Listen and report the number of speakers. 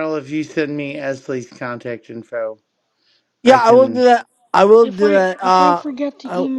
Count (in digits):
3